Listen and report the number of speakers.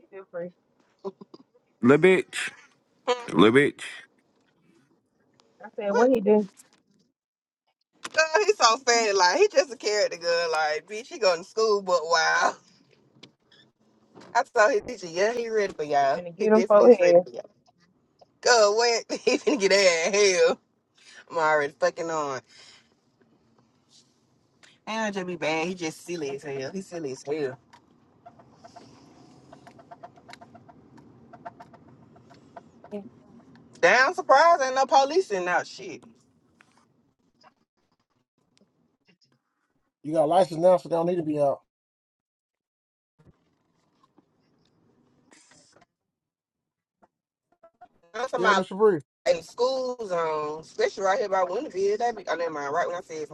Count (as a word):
four